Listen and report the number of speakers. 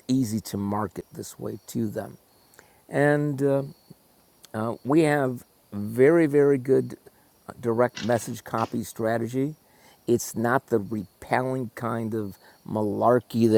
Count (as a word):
one